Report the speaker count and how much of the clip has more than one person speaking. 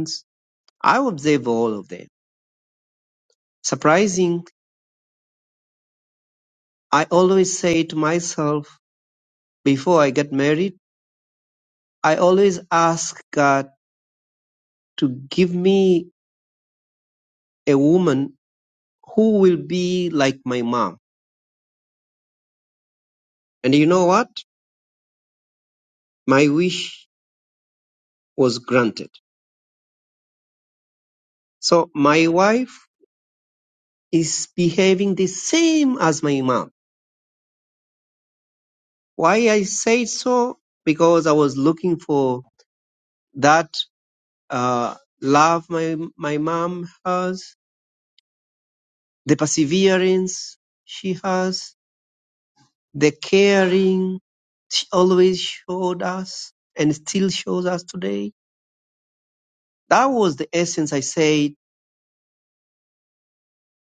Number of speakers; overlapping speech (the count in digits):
1, no overlap